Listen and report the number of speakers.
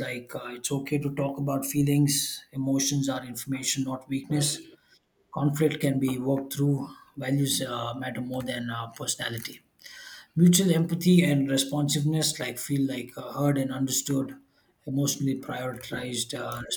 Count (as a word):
one